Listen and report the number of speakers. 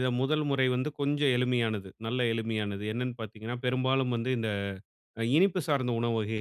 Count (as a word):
one